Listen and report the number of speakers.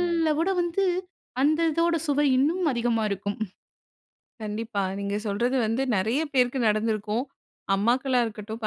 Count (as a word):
two